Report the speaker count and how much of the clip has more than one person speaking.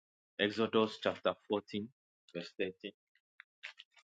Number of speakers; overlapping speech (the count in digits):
1, no overlap